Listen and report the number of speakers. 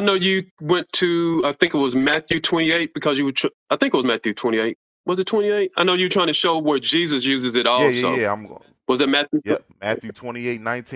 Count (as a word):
two